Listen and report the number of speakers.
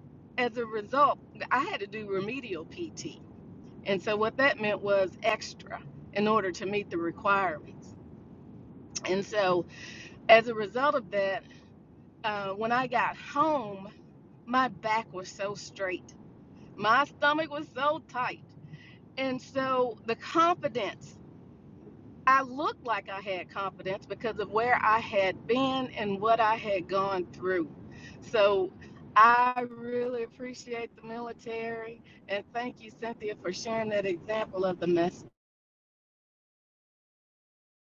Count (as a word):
one